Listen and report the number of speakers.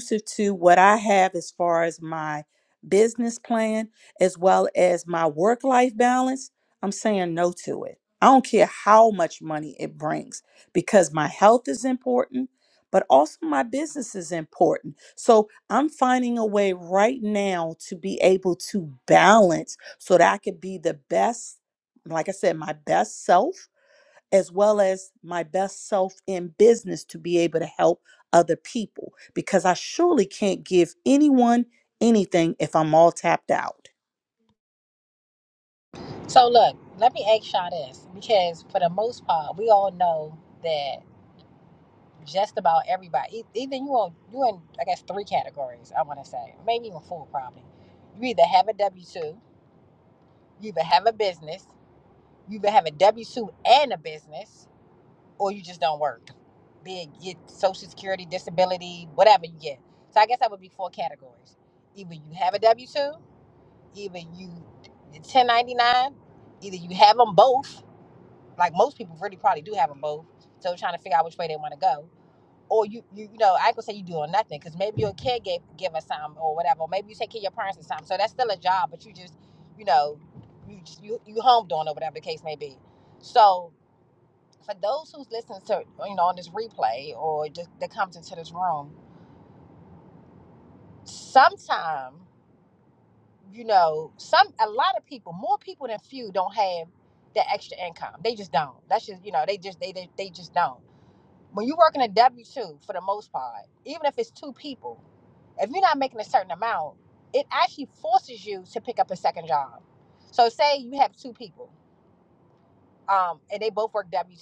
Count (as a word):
two